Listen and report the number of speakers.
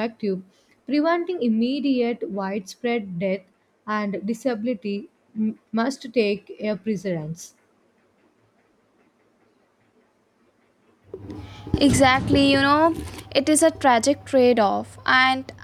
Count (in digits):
2